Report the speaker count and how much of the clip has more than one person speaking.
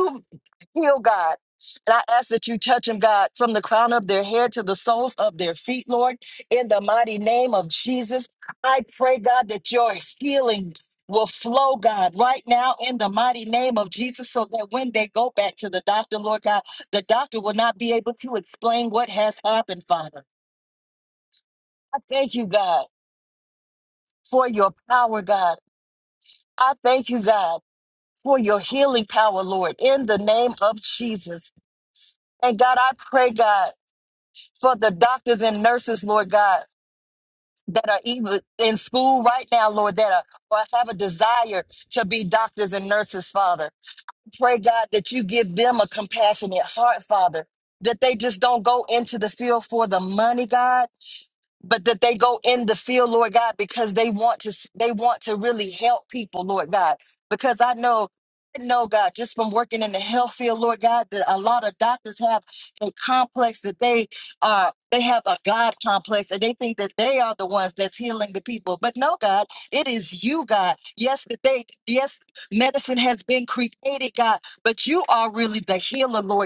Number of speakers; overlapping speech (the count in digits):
1, no overlap